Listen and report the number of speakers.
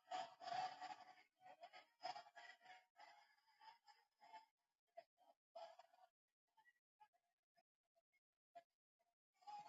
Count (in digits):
0